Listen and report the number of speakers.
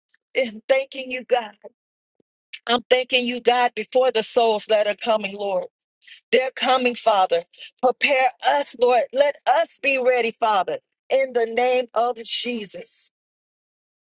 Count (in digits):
1